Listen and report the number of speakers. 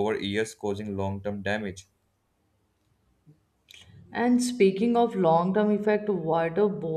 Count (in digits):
2